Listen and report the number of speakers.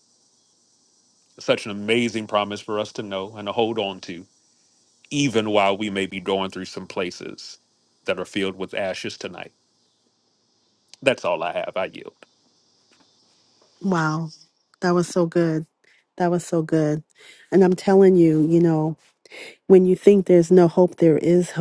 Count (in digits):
2